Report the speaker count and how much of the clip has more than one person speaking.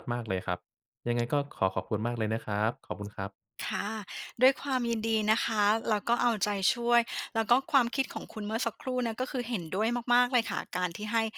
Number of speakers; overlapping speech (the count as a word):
two, no overlap